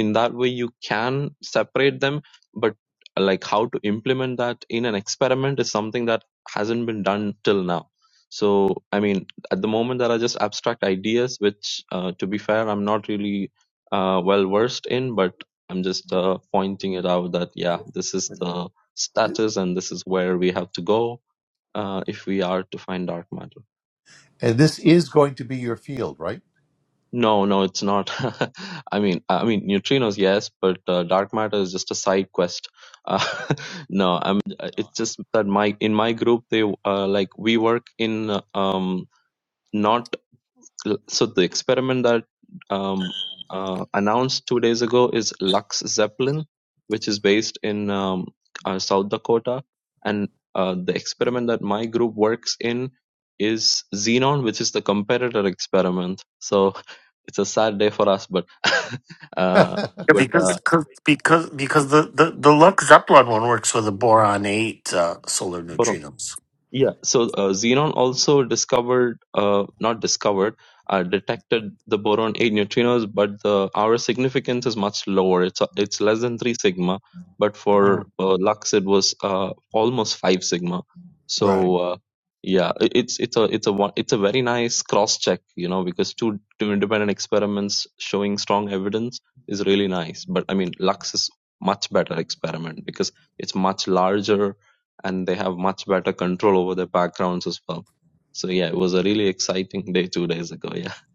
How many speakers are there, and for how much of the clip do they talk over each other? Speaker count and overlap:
3, about 1%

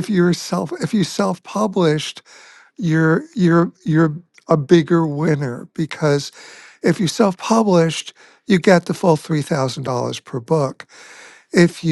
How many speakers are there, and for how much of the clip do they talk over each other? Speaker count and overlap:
1, no overlap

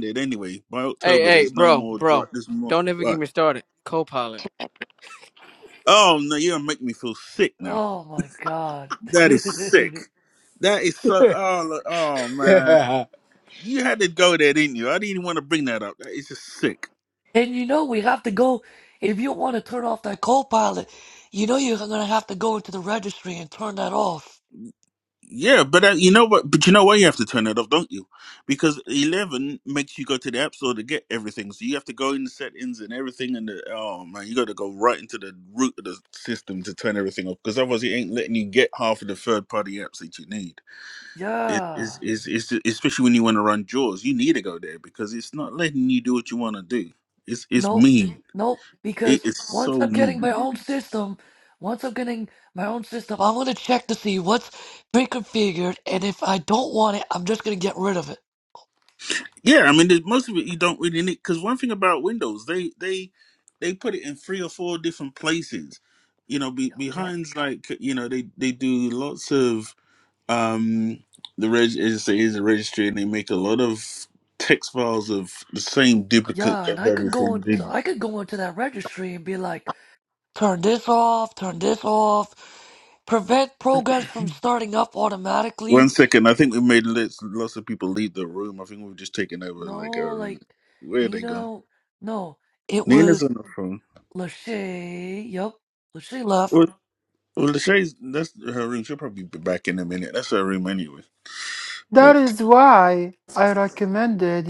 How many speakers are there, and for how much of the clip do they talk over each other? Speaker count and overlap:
4, about 8%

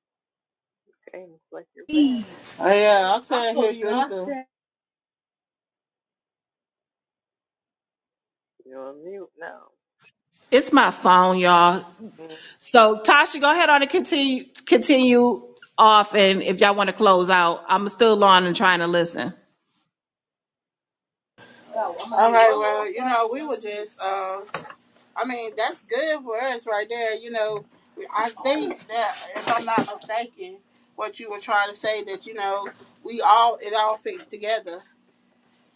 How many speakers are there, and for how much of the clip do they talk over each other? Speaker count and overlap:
3, about 1%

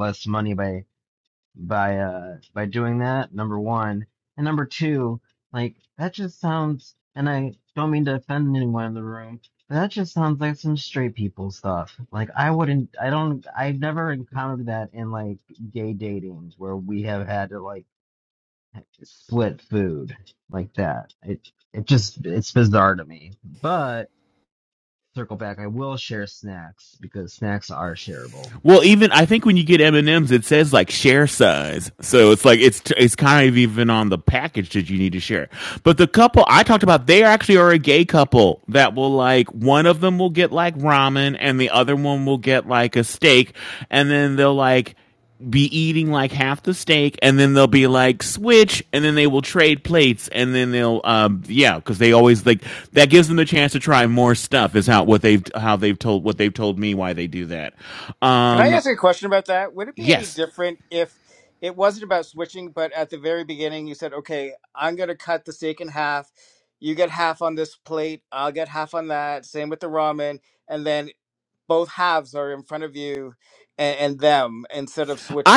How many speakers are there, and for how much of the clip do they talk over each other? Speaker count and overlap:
3, about 1%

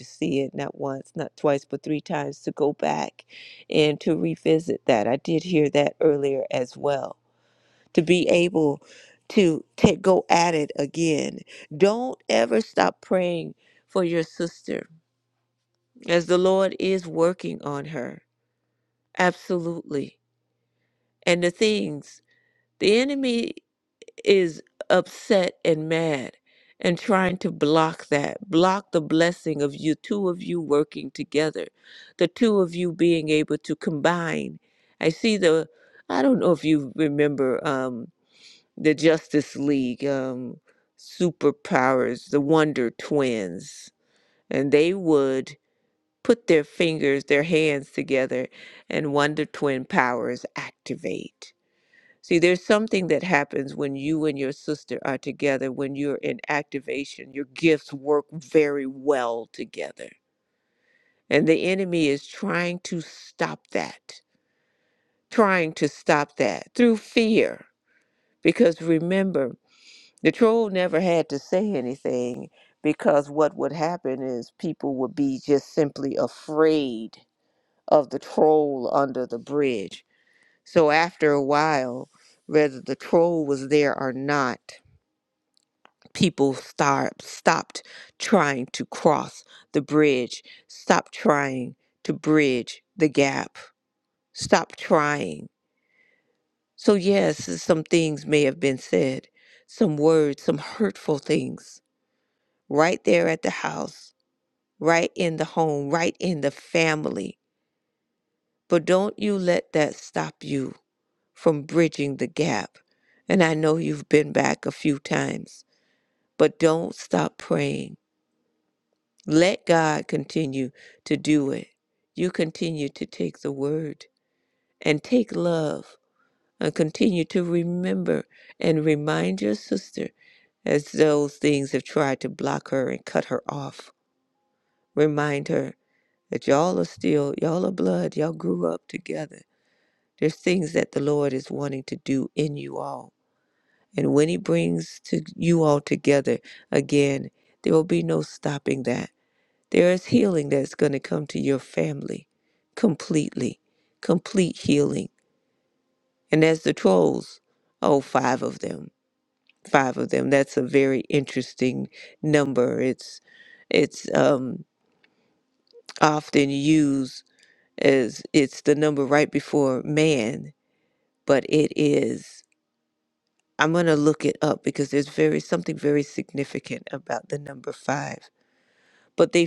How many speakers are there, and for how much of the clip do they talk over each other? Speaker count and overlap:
1, no overlap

